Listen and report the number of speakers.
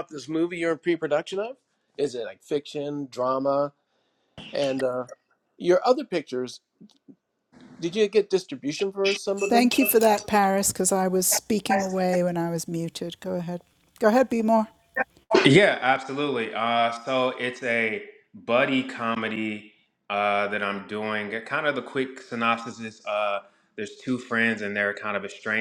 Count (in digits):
3